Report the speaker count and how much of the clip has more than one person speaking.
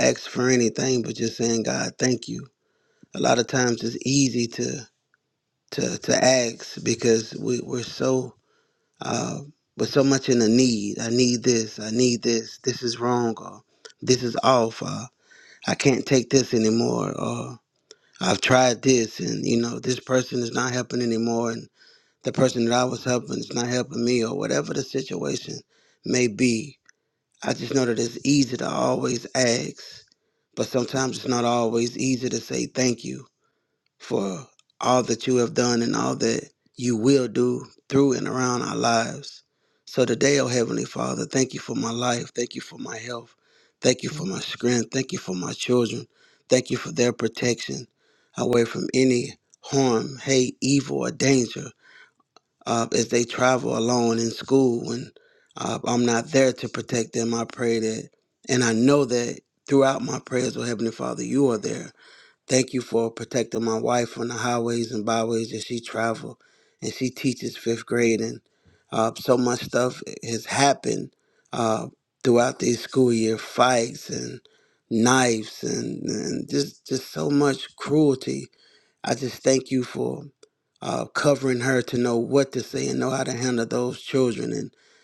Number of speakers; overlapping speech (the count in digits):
1, no overlap